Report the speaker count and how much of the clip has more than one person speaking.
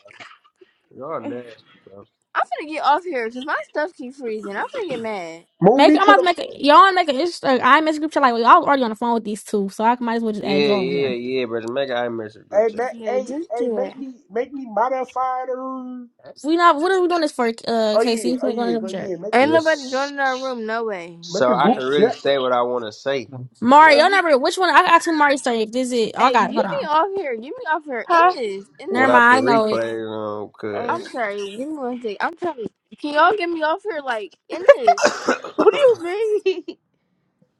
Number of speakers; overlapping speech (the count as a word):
five, about 21%